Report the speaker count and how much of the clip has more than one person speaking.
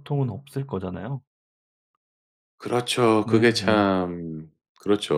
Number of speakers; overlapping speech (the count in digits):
2, about 11%